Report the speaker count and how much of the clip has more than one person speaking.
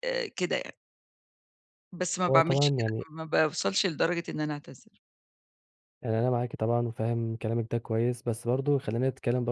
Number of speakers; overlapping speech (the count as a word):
two, about 8%